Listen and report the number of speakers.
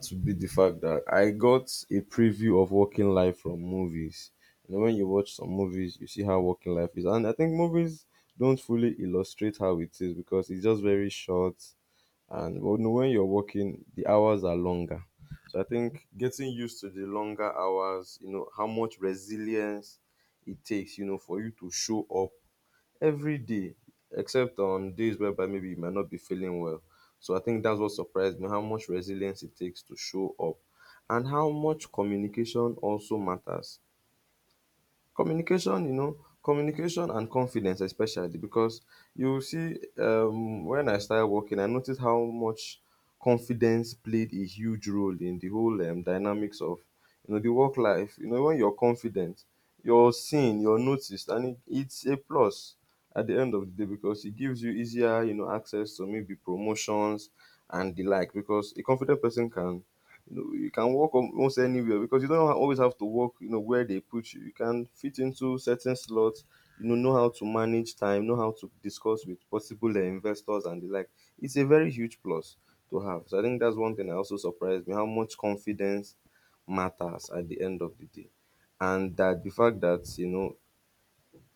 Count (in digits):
1